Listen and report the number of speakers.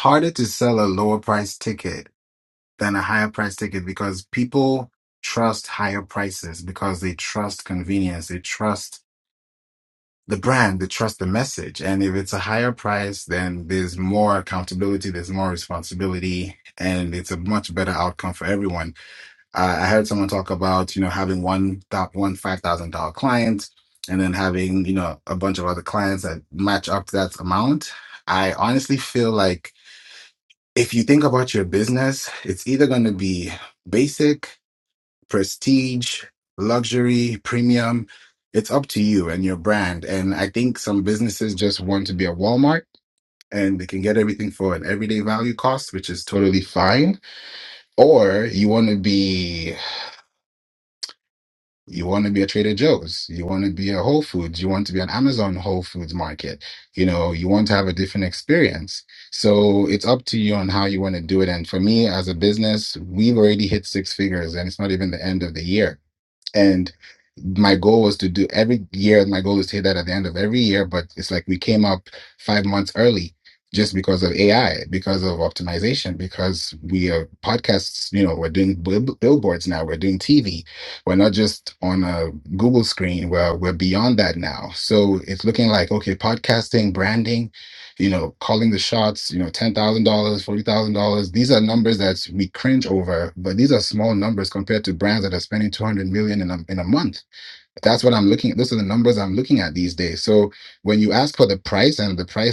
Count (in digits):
1